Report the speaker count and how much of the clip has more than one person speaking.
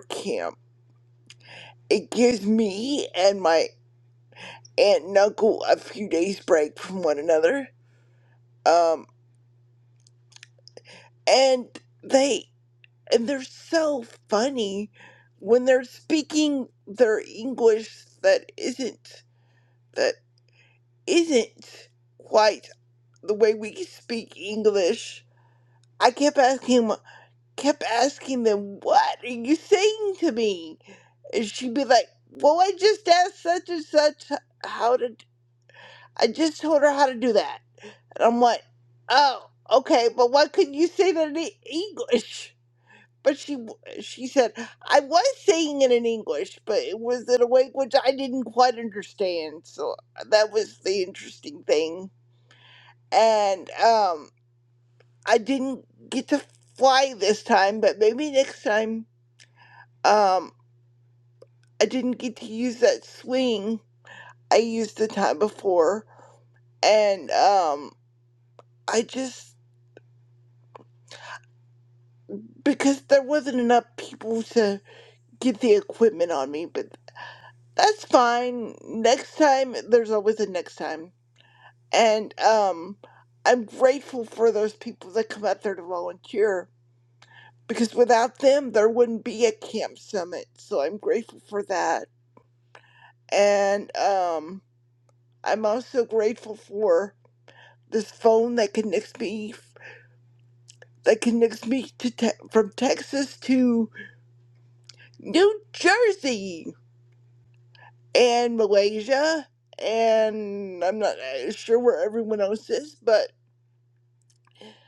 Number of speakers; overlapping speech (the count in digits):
1, no overlap